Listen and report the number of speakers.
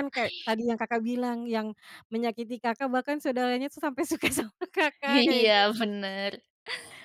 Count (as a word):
two